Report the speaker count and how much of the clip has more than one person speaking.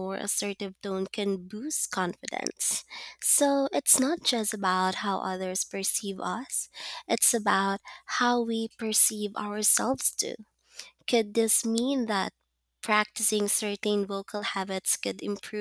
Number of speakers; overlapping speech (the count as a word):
one, no overlap